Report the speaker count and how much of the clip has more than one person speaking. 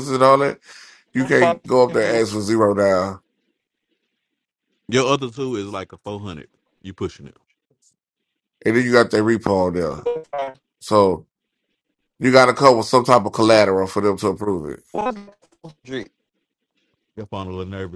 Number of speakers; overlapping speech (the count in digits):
3, about 6%